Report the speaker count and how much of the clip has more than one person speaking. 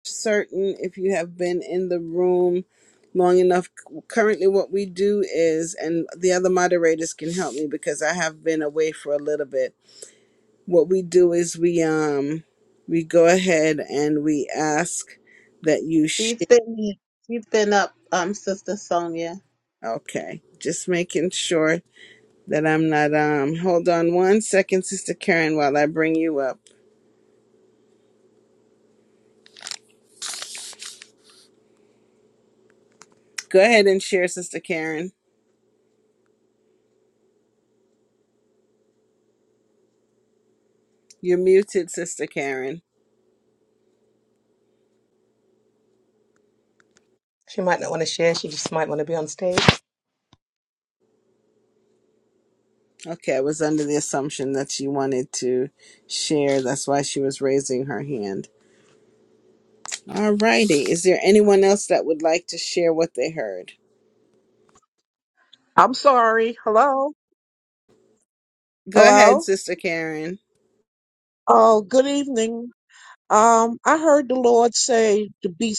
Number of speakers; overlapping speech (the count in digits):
4, about 1%